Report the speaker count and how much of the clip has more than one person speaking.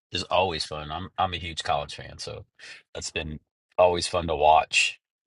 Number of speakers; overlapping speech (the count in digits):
1, no overlap